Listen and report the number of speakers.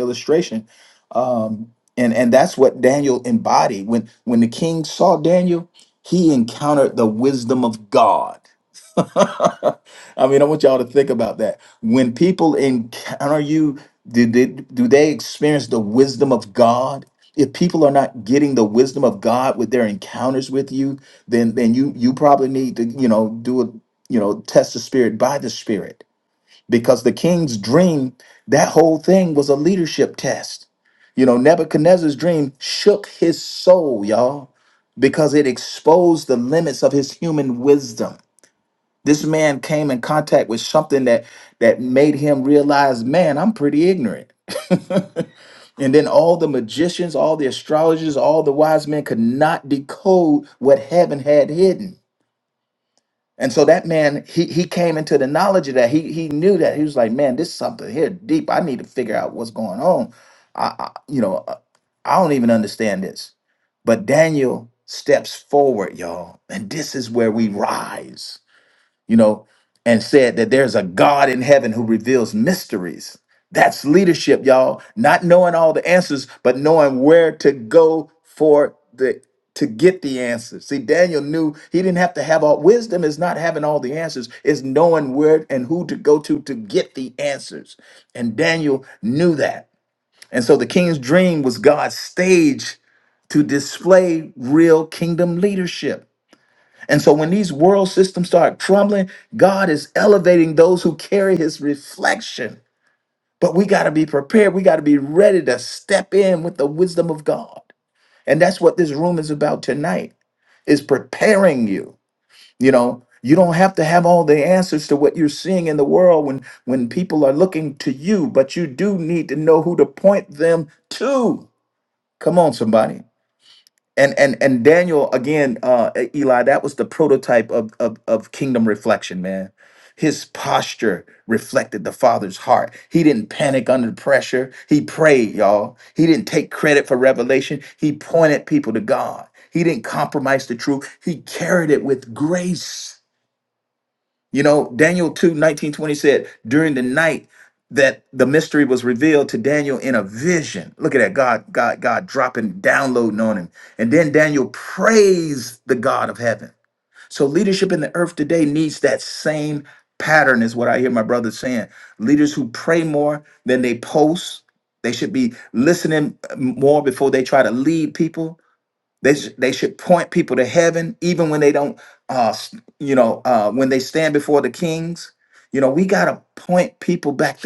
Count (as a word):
one